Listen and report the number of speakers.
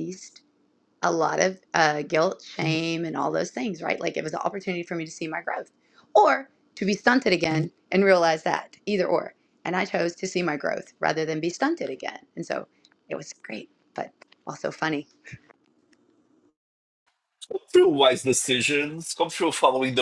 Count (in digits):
2